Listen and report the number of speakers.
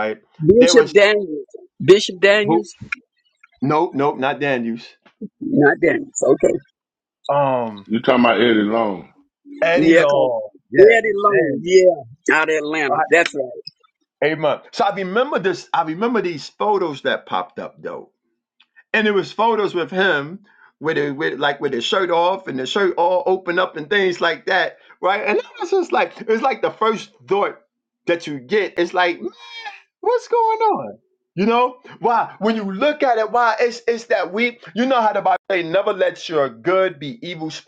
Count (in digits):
3